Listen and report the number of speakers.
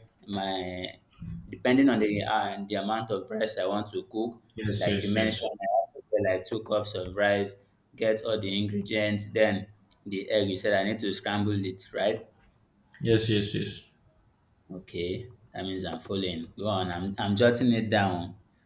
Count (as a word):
two